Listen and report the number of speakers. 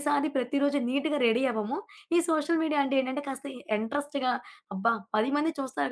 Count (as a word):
one